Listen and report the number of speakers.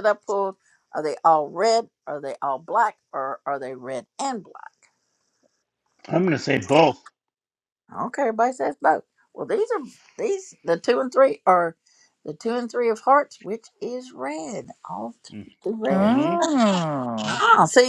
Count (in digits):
3